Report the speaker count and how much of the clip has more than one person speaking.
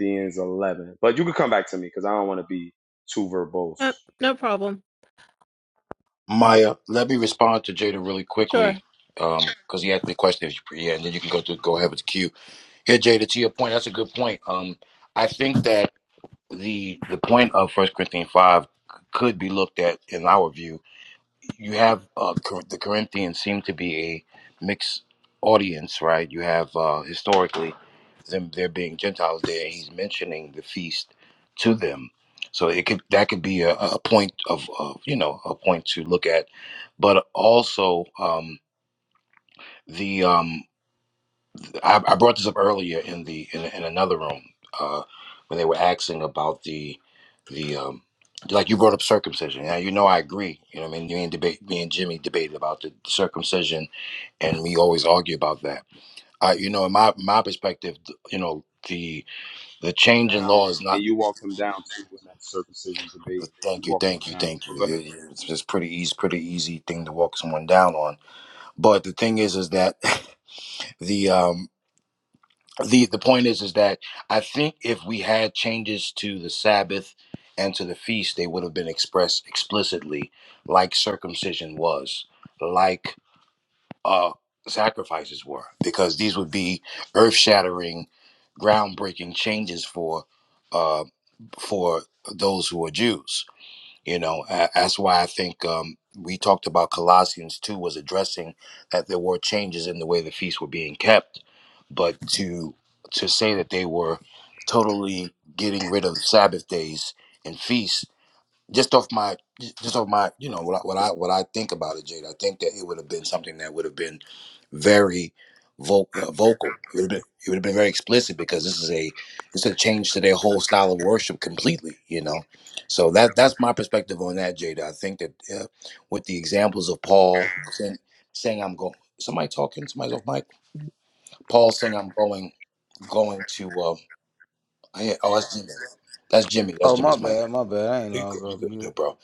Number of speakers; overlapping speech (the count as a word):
four, about 3%